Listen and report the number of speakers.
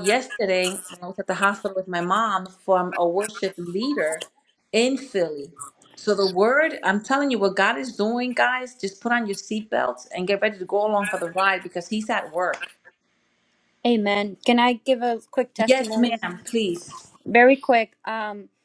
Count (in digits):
2